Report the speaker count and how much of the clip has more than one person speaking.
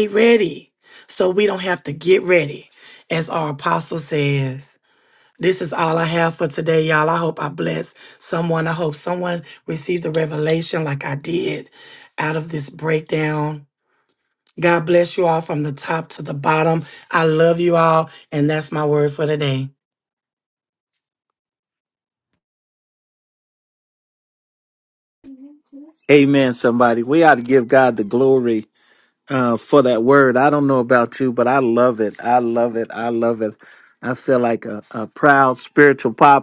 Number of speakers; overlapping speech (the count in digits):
2, no overlap